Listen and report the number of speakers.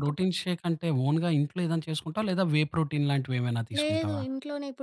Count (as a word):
two